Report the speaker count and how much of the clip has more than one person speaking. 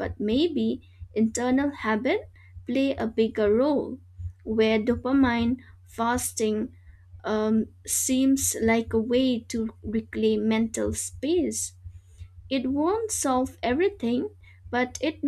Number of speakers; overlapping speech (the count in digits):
1, no overlap